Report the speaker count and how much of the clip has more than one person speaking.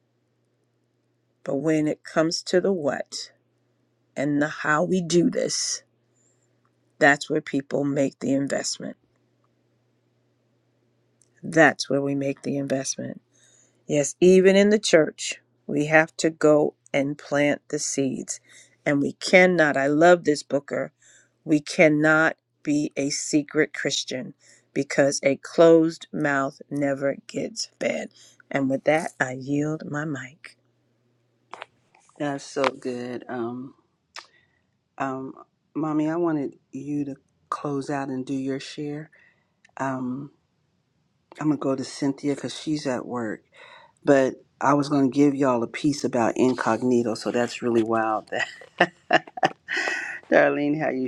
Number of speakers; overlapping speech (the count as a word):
two, no overlap